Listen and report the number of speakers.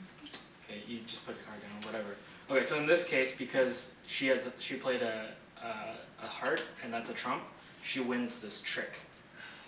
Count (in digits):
1